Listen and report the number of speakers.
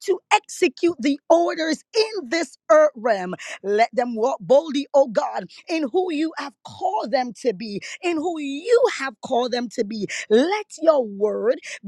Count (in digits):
1